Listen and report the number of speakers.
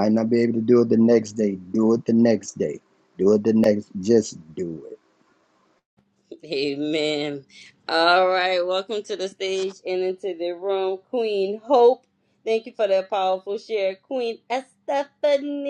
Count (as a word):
two